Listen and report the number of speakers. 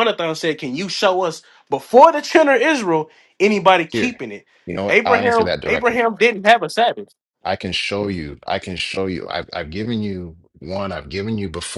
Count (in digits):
2